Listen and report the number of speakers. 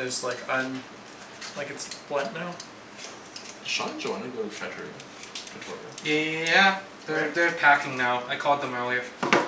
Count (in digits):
3